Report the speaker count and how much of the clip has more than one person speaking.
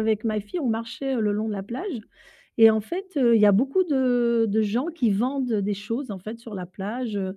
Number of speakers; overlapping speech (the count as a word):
one, no overlap